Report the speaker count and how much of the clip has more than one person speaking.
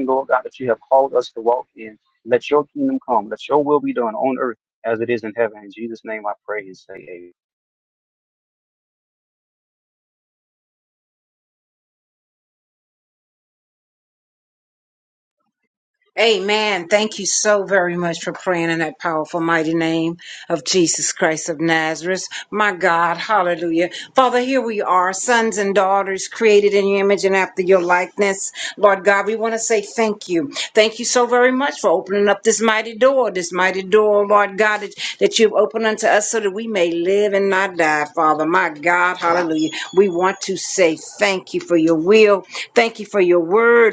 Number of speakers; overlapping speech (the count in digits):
2, no overlap